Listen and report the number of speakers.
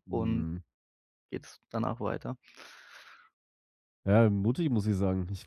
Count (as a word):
two